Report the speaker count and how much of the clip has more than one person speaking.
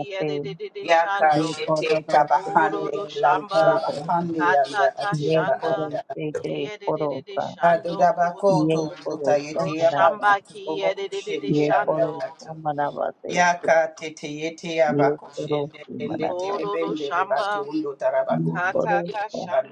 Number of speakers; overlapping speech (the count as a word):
three, about 74%